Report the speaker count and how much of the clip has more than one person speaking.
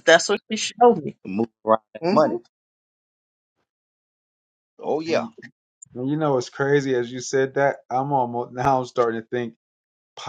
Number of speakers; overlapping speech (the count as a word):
three, about 5%